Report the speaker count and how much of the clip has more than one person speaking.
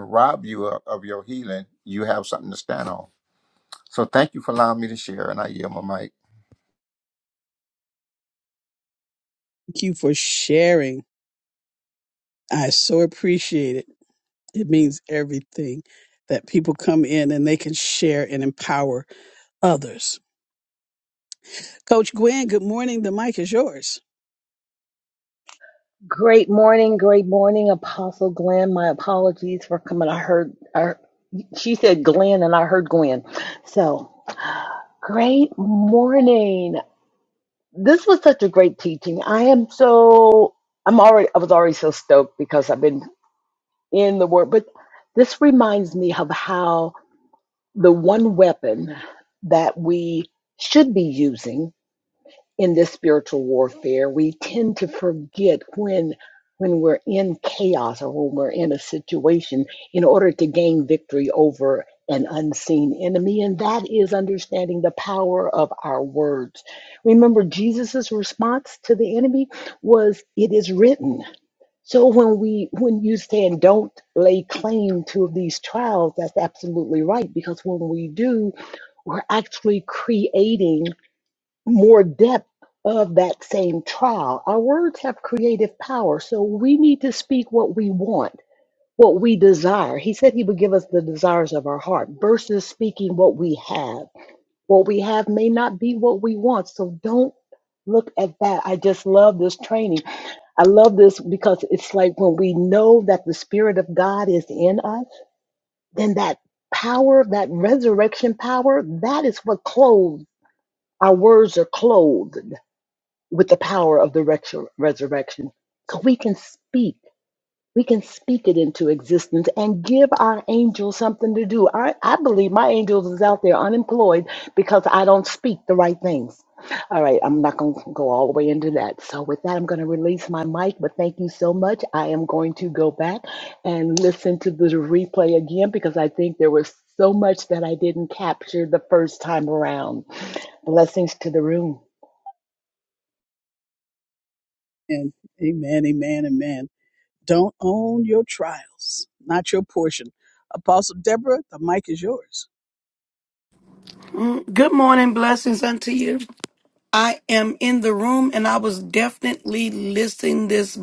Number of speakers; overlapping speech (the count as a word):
four, no overlap